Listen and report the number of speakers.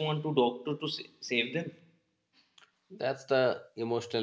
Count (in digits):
2